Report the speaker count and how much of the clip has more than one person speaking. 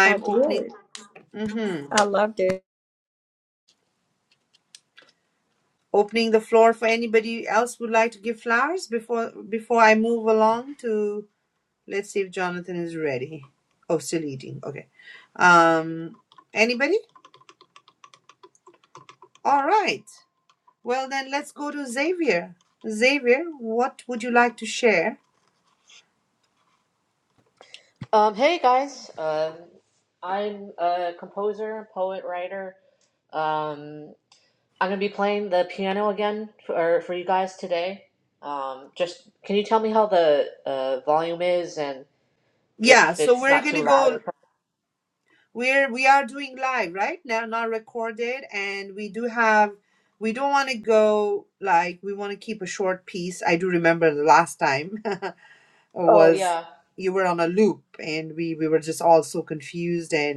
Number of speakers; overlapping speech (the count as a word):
three, about 4%